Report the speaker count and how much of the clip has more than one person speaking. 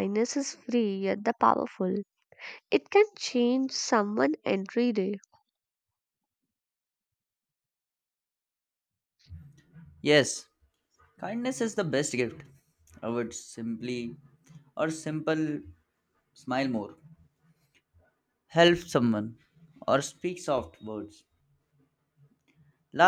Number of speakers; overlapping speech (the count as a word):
two, no overlap